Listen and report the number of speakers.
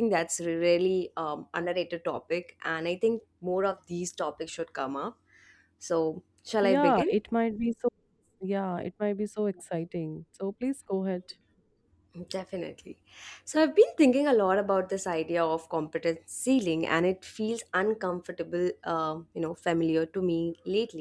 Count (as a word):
two